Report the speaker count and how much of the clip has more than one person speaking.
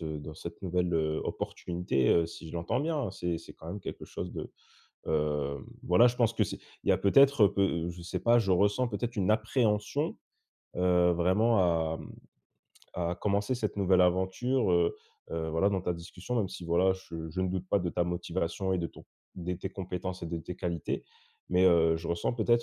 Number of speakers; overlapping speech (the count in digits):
1, no overlap